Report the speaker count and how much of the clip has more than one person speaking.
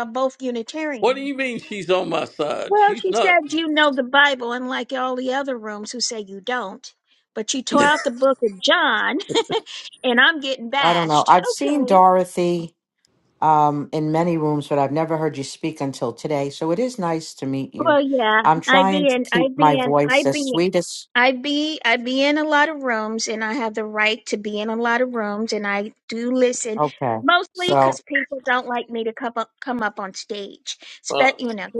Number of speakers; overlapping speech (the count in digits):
3, about 15%